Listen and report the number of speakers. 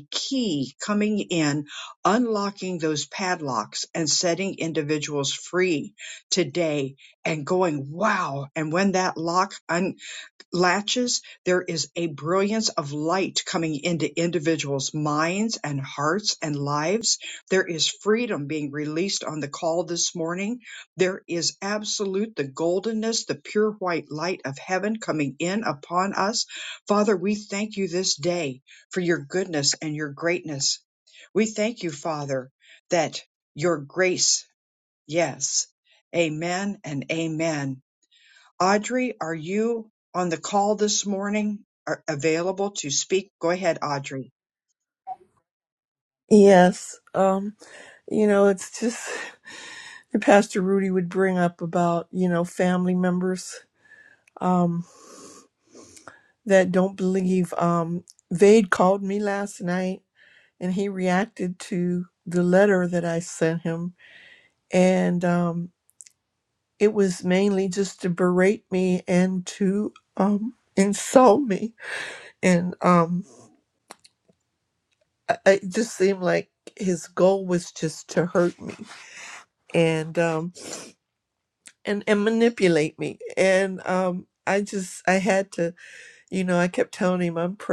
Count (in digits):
2